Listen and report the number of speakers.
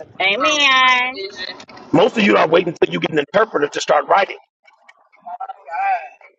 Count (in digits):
2